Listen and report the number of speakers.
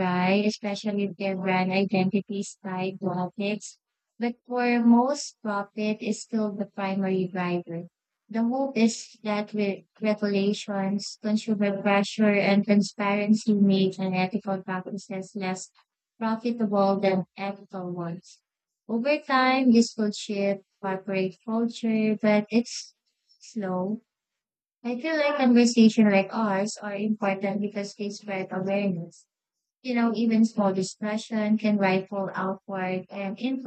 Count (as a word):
one